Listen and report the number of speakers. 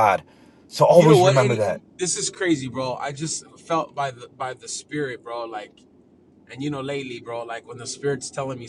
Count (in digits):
2